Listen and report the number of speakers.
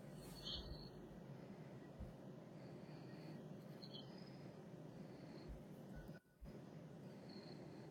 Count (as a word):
zero